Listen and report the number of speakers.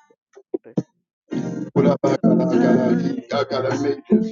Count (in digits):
1